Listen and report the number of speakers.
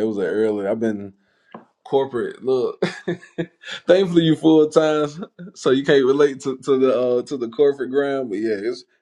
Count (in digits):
1